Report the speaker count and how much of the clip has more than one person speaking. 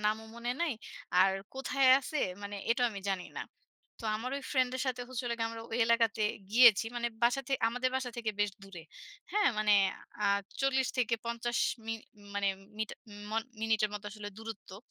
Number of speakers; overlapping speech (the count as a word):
one, no overlap